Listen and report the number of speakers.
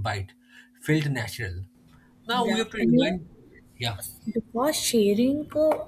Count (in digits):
2